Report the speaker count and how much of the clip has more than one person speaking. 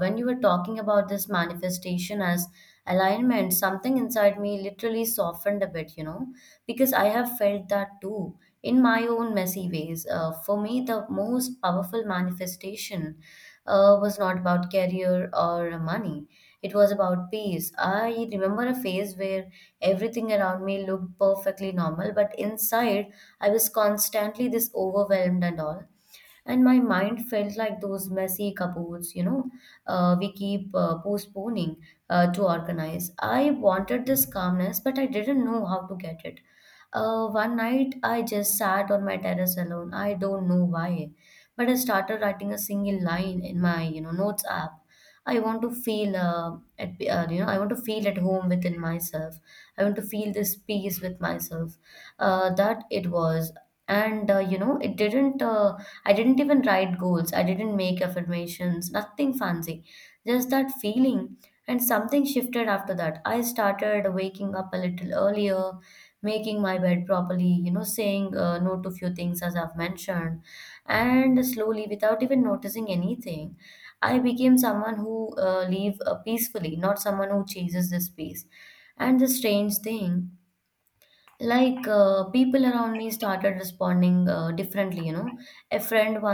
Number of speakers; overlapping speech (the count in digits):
1, no overlap